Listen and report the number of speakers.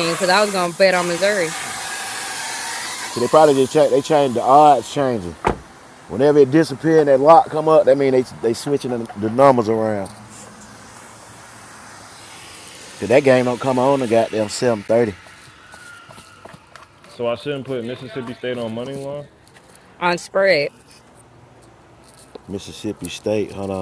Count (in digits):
3